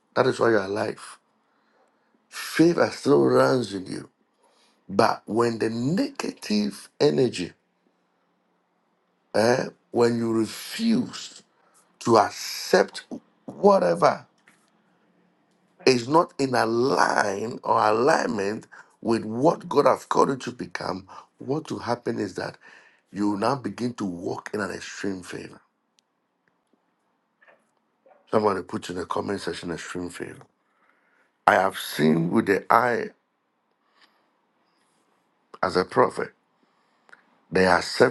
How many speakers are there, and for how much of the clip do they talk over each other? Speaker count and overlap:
one, no overlap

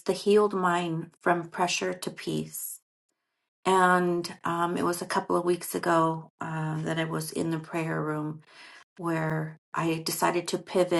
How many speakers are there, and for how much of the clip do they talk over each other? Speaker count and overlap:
one, no overlap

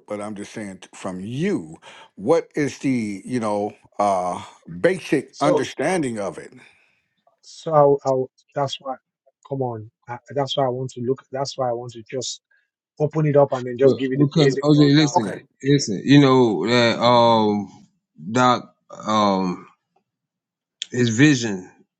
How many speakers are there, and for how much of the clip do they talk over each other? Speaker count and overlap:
three, about 8%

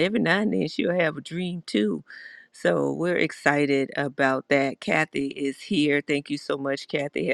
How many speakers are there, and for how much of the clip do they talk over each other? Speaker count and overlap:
one, no overlap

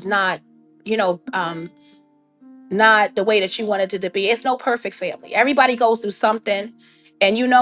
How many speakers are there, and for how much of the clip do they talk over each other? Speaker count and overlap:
one, no overlap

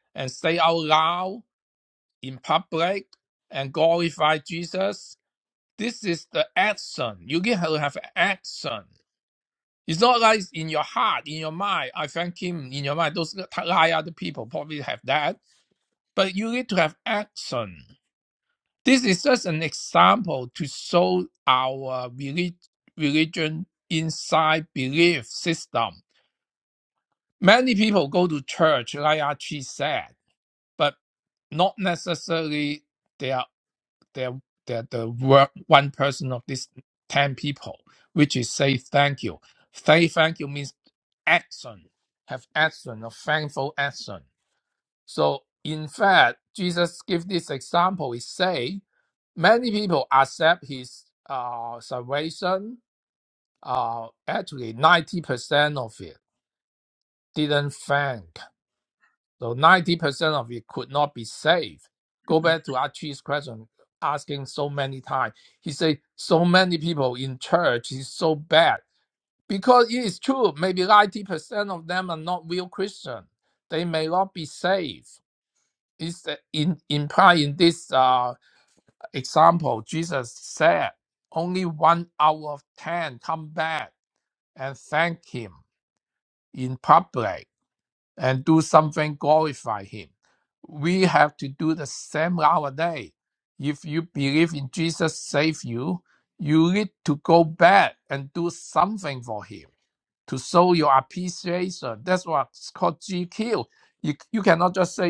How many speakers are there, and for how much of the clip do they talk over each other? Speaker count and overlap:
one, no overlap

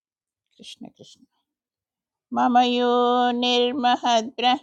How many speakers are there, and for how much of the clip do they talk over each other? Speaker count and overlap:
one, no overlap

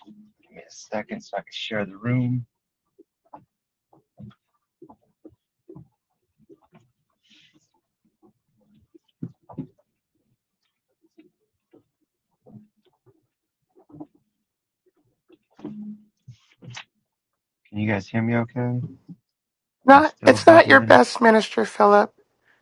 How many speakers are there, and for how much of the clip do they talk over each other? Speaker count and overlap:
two, about 5%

